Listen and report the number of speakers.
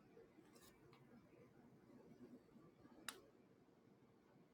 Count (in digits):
0